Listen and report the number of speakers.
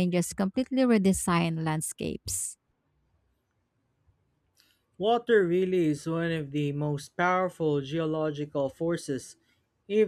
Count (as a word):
two